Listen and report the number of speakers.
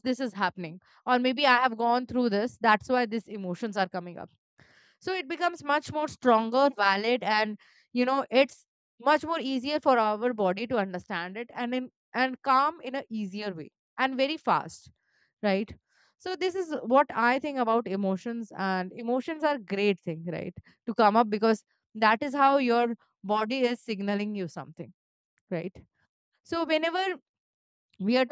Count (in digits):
1